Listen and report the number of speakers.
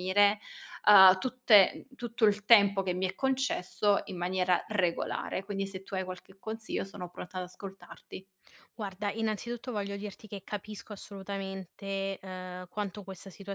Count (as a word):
two